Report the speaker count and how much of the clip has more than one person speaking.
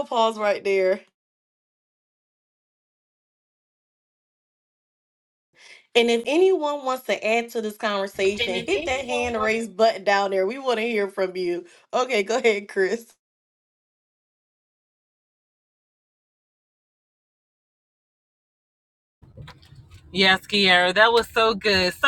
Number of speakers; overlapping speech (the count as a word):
two, no overlap